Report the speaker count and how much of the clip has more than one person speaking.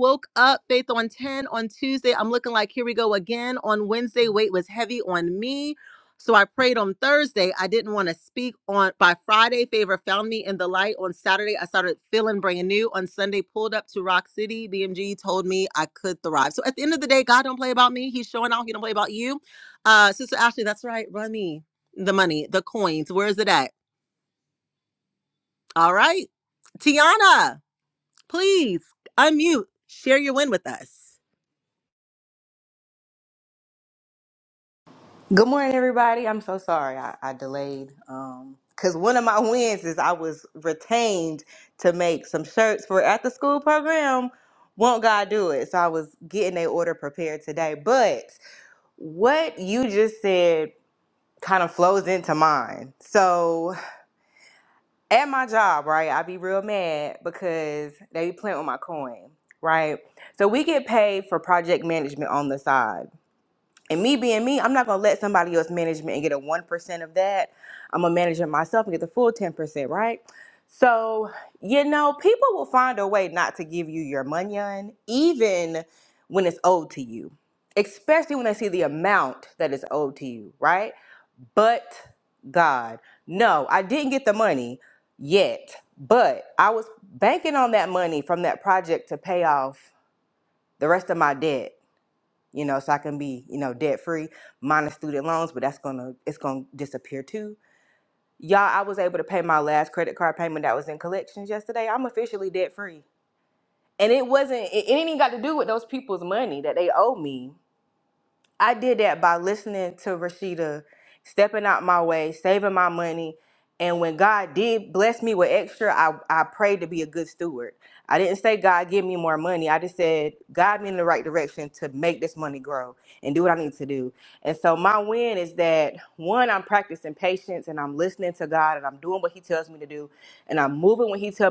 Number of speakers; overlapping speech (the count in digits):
2, no overlap